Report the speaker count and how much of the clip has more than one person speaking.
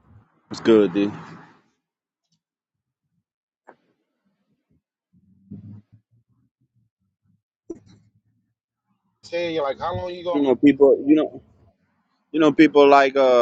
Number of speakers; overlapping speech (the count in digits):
2, about 1%